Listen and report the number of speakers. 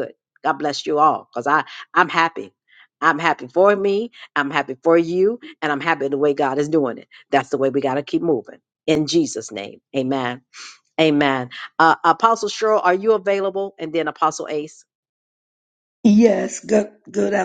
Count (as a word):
two